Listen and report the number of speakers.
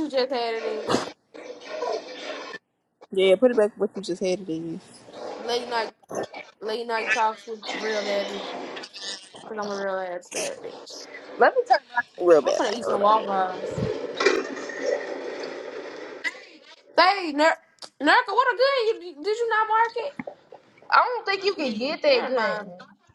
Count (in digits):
3